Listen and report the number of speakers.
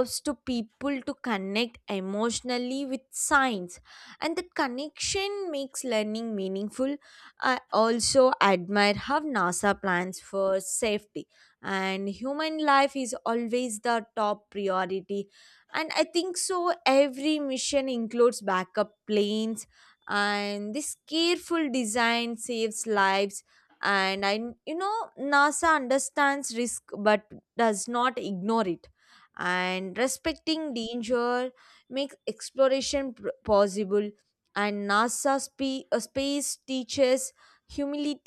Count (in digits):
1